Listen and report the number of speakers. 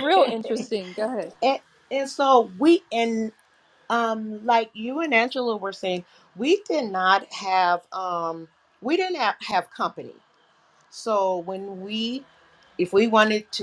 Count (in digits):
2